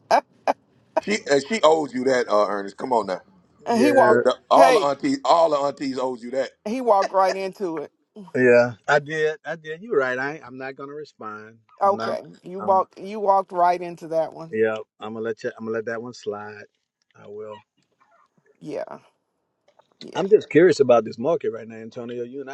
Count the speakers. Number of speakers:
3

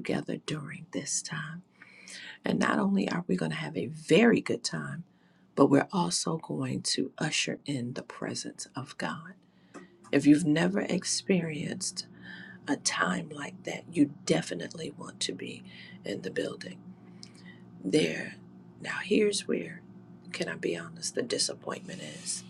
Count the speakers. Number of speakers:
1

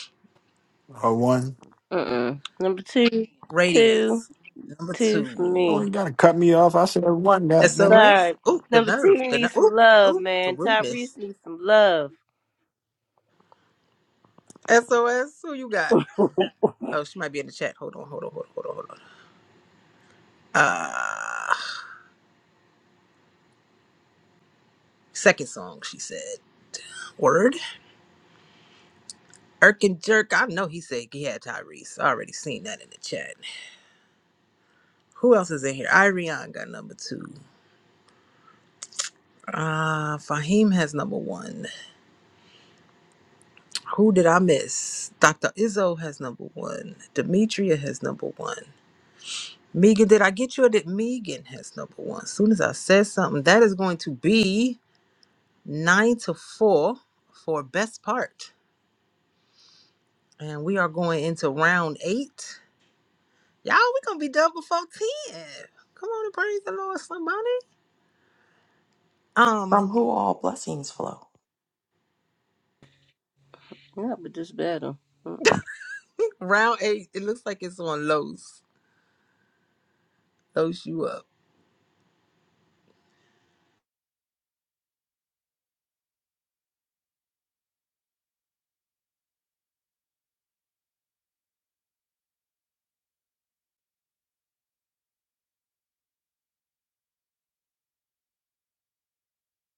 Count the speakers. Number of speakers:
4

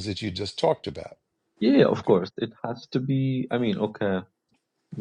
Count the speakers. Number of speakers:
2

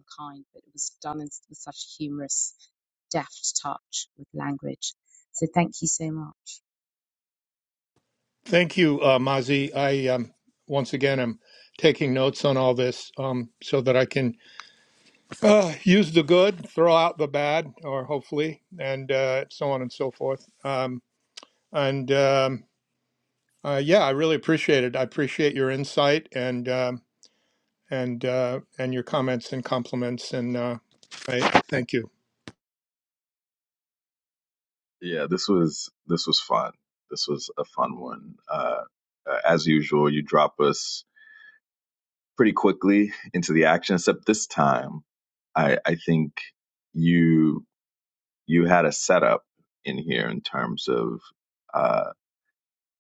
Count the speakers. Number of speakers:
3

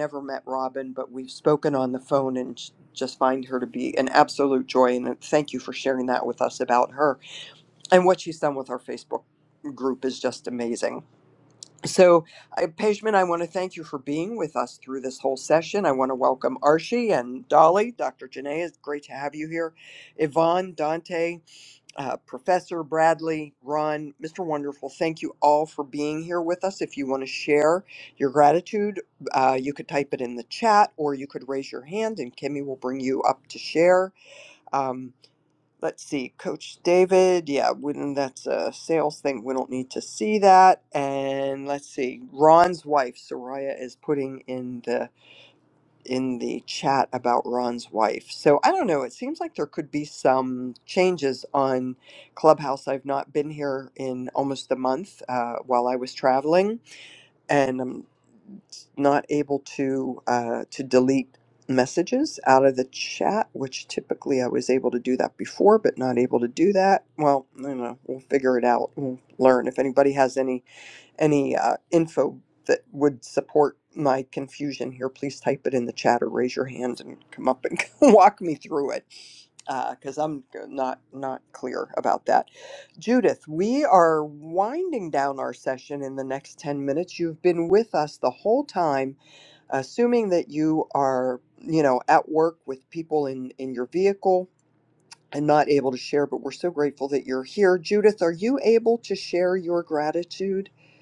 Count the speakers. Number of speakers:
1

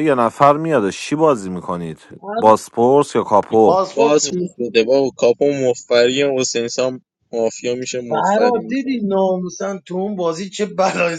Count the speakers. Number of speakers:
3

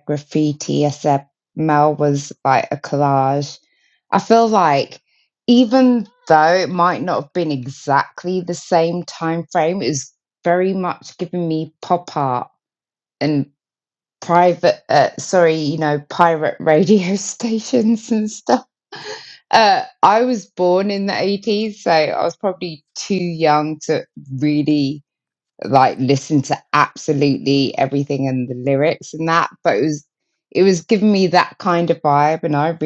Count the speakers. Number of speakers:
1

